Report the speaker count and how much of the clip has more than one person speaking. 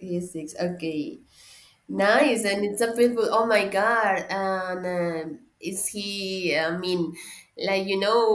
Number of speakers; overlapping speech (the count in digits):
1, no overlap